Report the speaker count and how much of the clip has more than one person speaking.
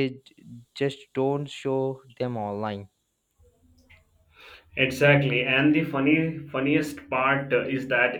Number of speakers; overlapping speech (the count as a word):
two, no overlap